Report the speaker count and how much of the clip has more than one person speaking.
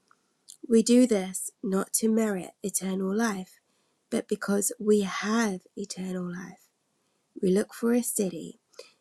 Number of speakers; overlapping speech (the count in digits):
1, no overlap